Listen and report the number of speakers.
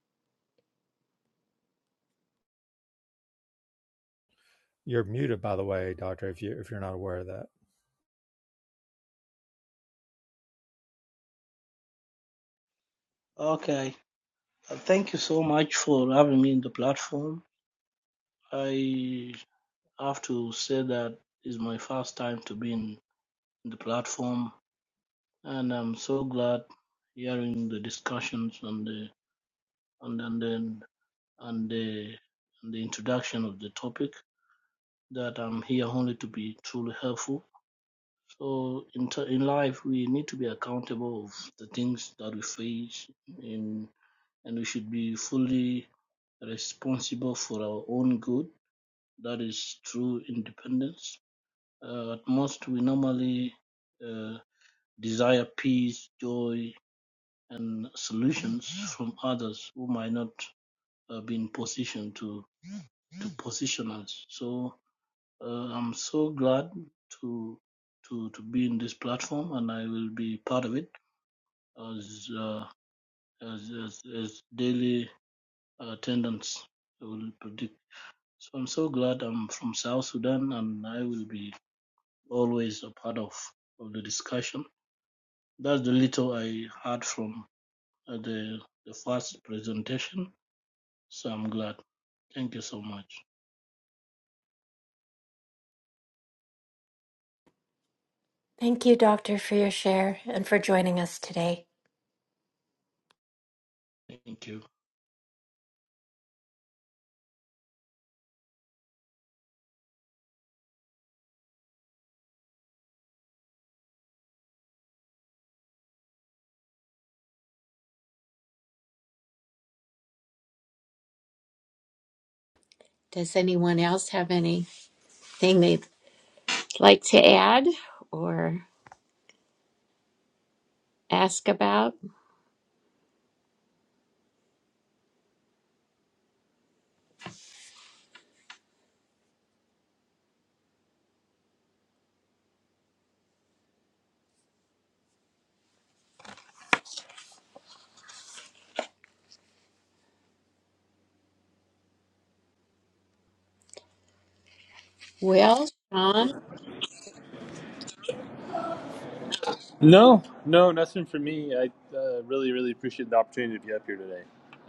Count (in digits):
5